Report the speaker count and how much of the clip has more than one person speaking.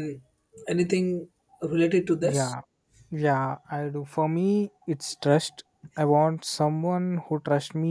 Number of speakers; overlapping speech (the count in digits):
2, about 1%